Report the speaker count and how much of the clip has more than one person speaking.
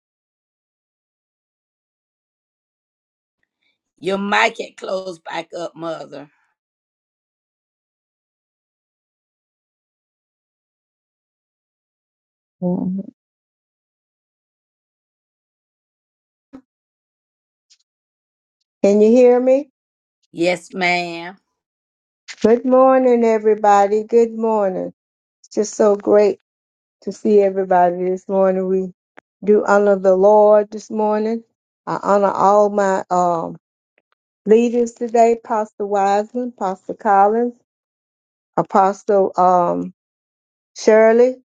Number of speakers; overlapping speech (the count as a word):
two, no overlap